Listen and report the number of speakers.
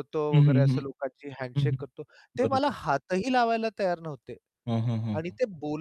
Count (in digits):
2